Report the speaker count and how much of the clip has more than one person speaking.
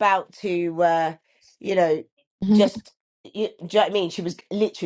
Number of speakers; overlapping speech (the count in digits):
1, no overlap